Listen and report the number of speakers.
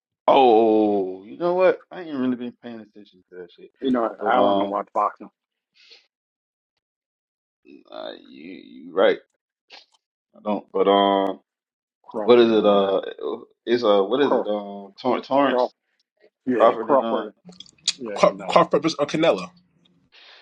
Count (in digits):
3